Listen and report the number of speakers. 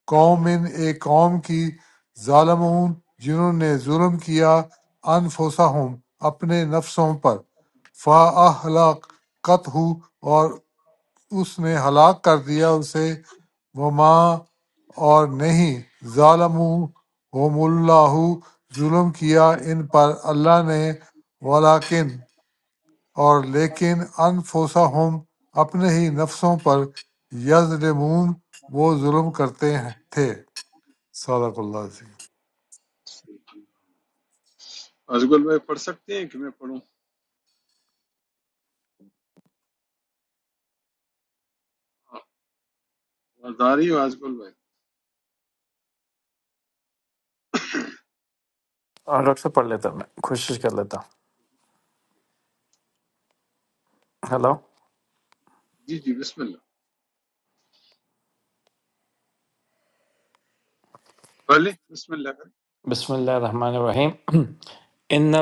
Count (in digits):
3